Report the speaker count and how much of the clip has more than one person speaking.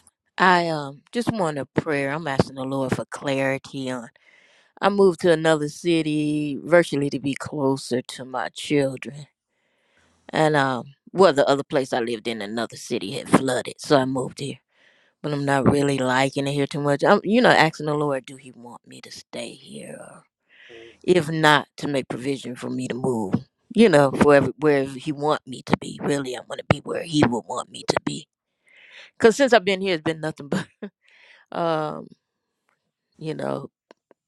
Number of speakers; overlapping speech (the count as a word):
one, no overlap